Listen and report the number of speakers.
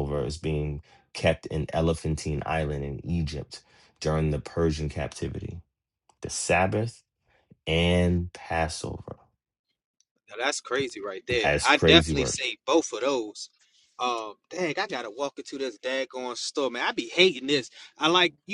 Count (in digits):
2